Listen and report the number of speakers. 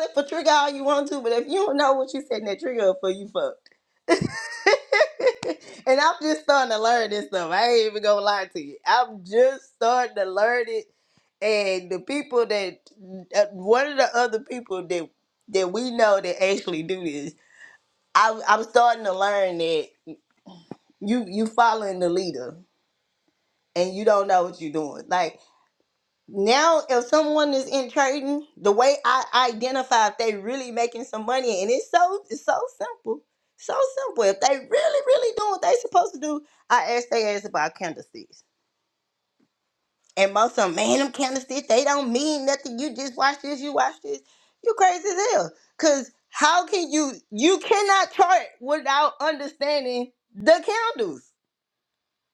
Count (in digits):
1